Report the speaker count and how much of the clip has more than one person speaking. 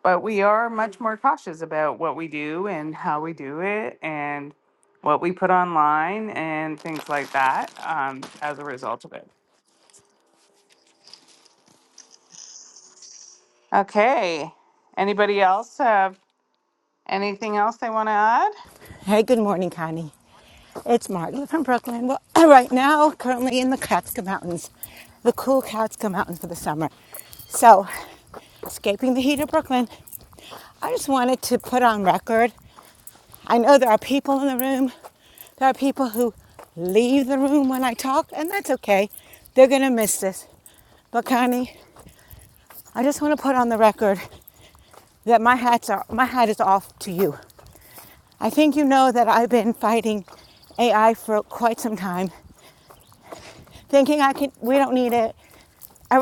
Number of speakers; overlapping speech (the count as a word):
two, no overlap